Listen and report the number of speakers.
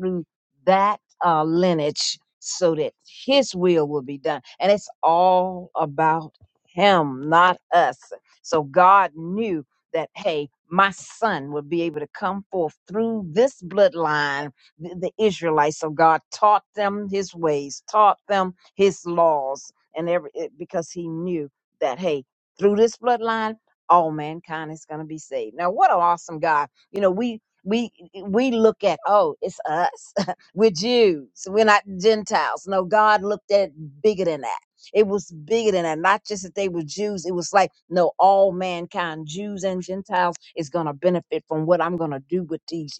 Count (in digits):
1